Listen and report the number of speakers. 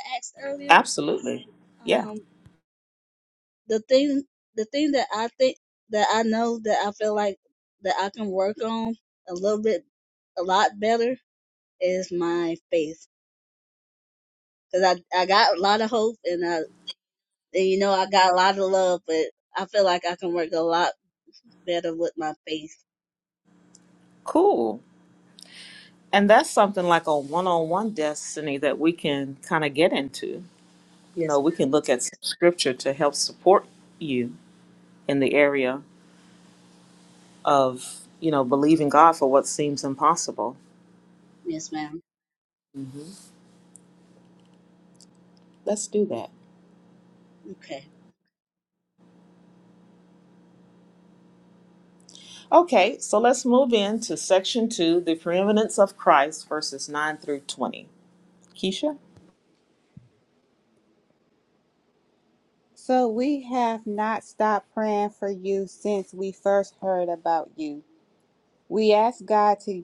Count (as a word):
three